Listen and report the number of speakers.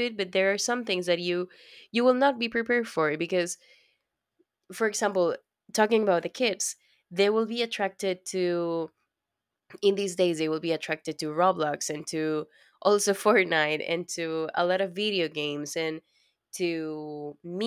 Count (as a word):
one